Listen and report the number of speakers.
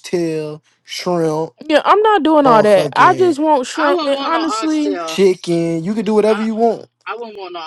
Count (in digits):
3